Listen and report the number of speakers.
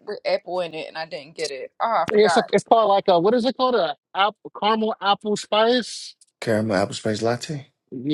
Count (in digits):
3